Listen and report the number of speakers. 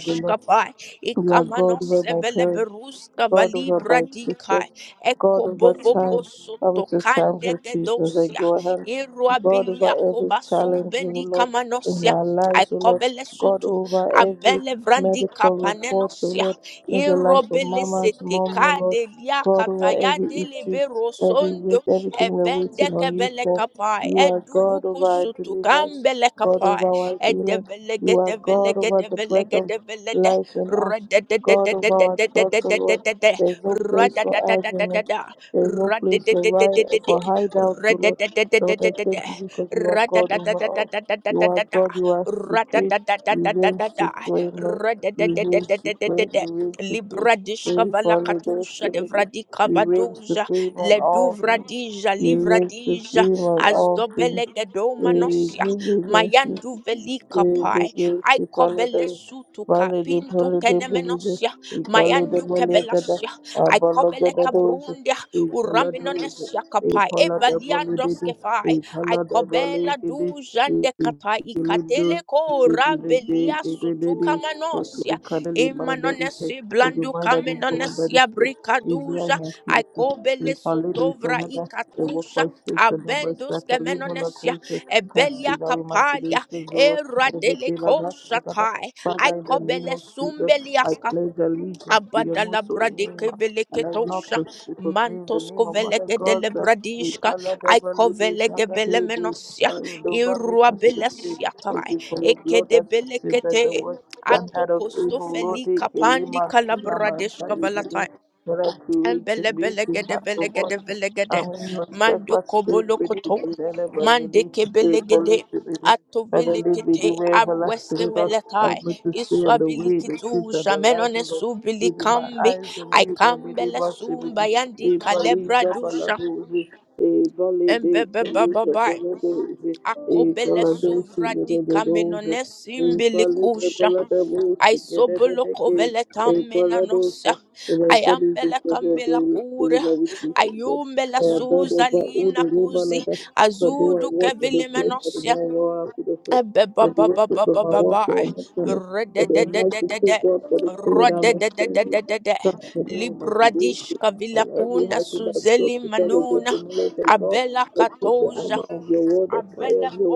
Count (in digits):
2